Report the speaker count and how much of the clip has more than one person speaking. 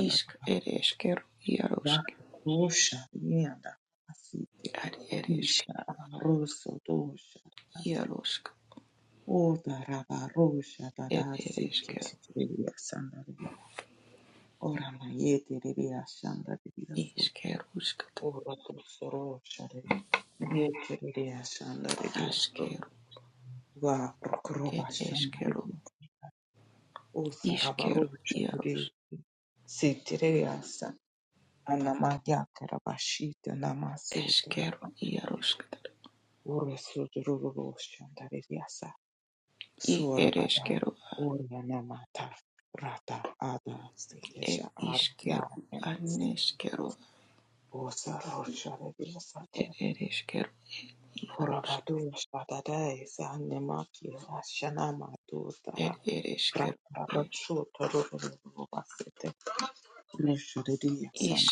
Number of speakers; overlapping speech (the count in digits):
2, about 14%